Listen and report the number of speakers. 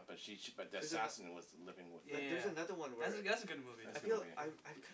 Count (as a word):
three